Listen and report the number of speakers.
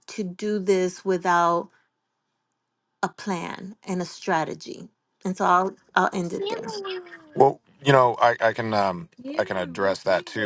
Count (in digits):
2